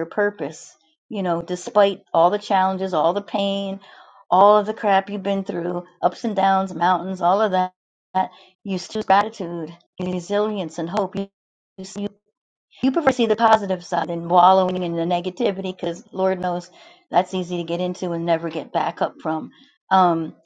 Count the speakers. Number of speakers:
one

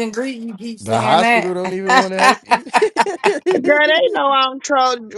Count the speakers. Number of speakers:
three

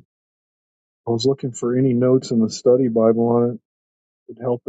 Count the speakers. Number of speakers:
one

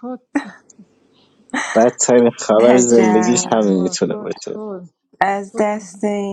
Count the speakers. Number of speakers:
three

